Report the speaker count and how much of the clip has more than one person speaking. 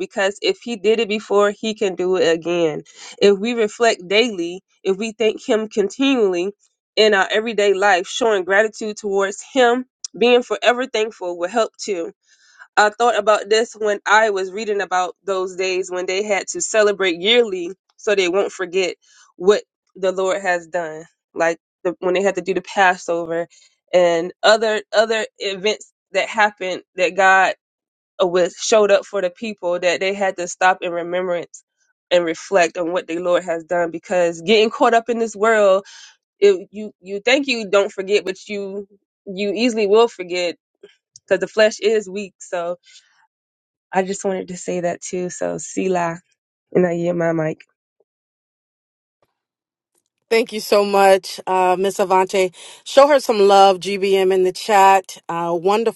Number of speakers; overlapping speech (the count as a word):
two, no overlap